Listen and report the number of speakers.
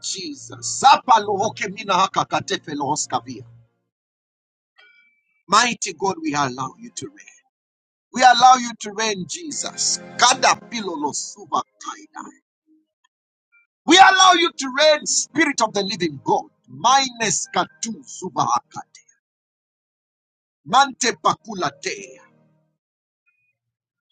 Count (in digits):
1